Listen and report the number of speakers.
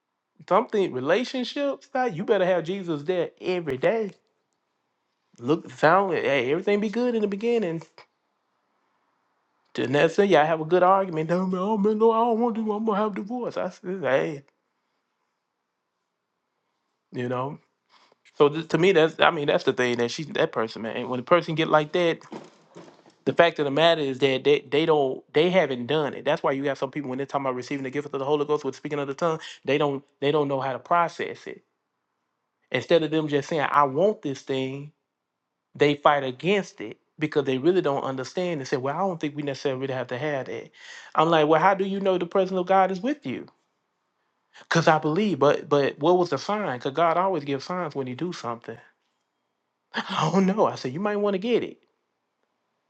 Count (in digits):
1